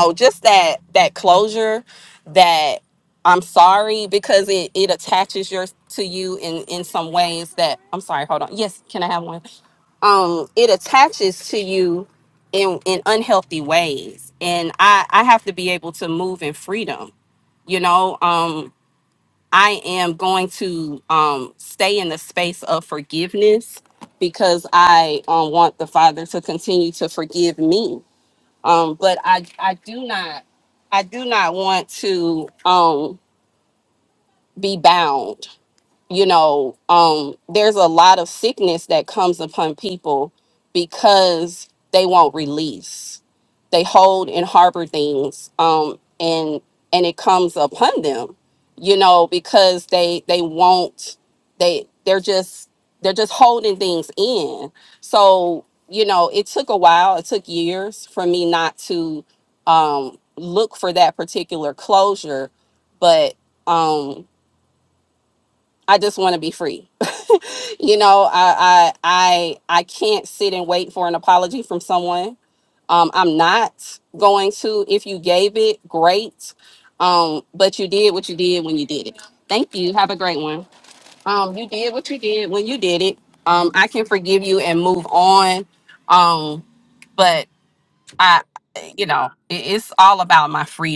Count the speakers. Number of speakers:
one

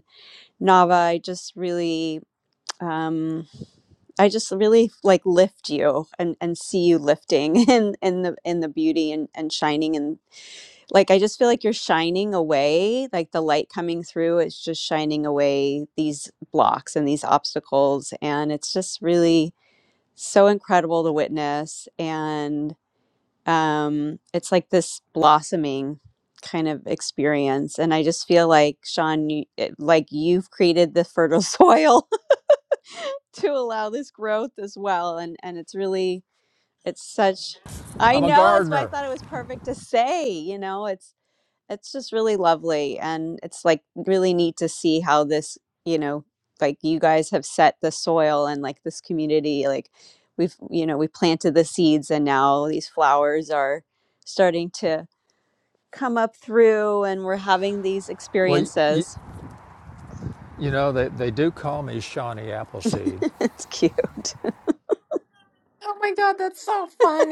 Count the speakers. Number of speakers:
three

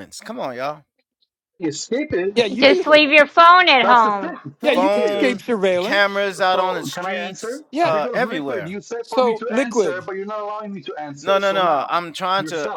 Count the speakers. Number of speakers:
four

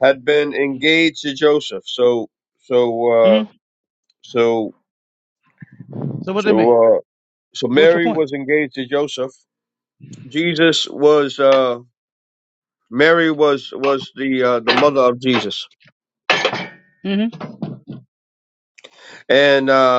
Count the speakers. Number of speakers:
two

